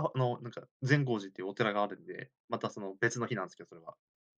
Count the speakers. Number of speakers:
one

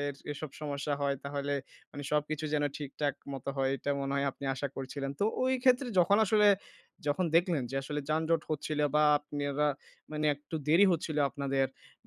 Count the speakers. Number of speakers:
one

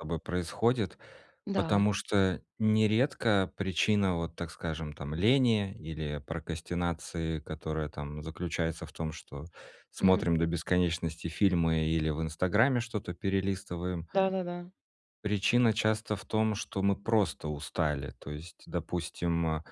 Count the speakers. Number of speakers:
two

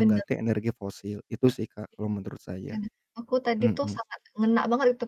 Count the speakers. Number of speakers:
two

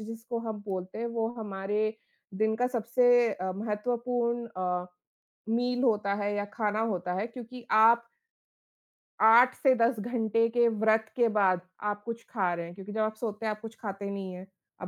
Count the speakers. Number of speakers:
one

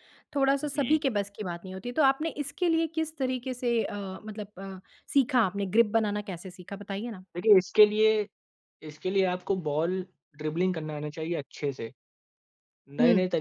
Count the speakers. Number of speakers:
two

